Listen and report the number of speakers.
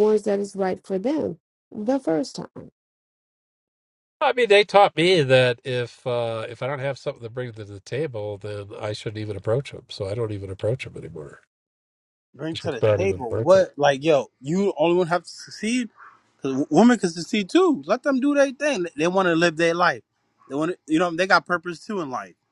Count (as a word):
three